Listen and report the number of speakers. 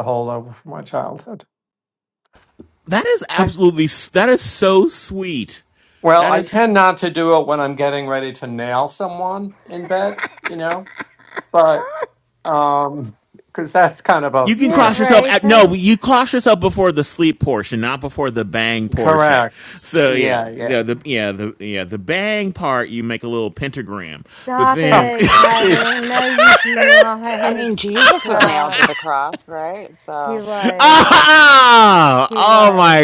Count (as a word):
four